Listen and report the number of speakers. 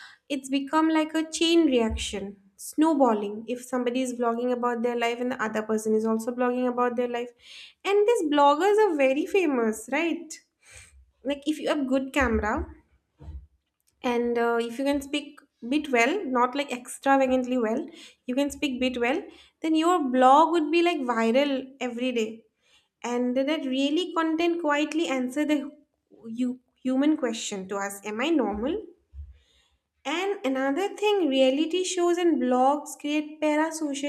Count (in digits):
1